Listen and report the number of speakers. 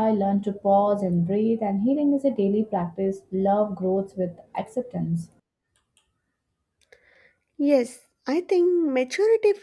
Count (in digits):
2